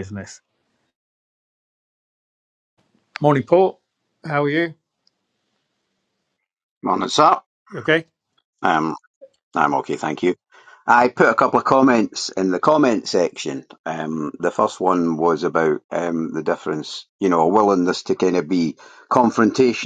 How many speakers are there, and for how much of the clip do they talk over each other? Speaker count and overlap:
2, no overlap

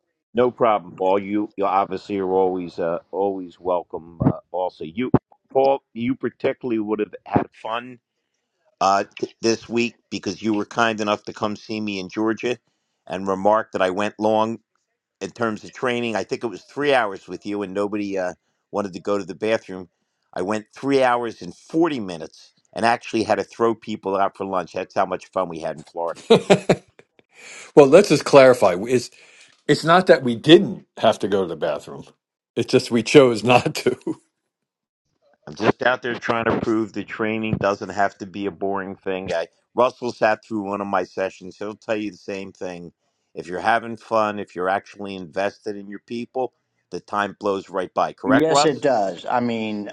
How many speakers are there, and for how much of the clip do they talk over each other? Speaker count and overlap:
3, about 1%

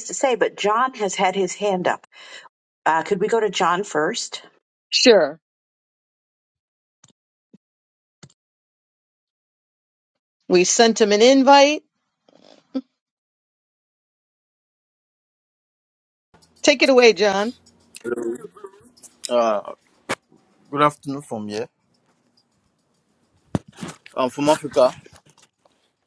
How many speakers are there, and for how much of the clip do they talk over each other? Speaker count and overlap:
3, no overlap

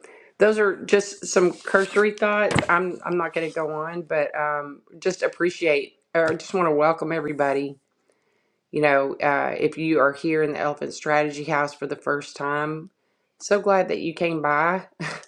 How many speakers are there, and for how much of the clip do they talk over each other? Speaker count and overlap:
1, no overlap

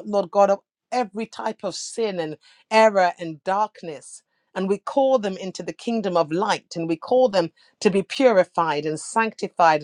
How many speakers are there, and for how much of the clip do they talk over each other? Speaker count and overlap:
1, no overlap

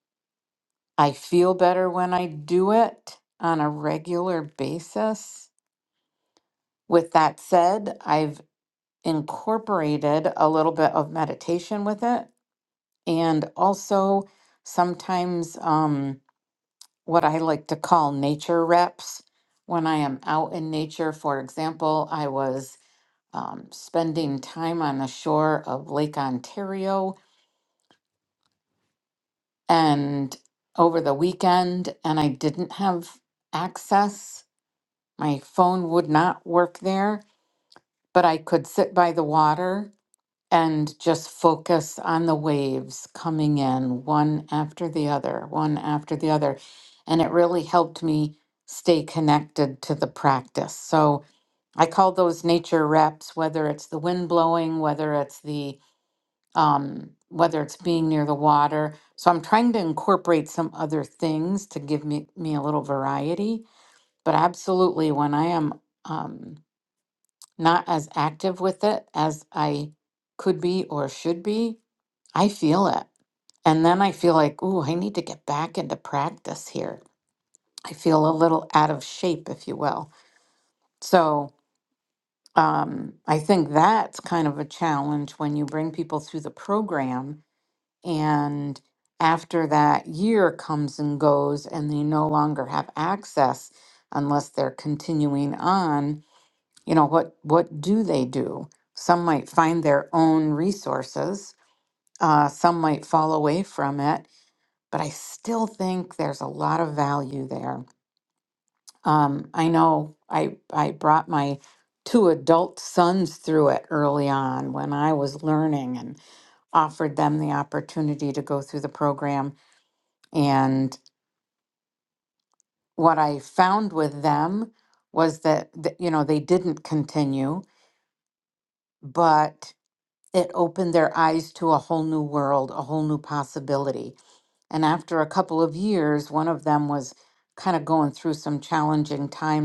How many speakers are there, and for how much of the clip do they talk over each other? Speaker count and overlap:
1, no overlap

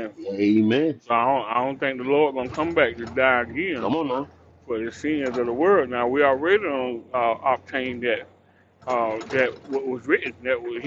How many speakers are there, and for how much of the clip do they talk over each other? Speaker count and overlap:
2, about 1%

